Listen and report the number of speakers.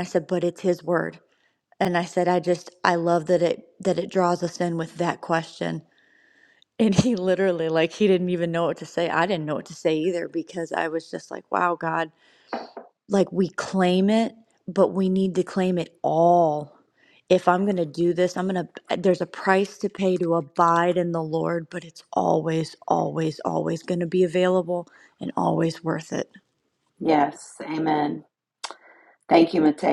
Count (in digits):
2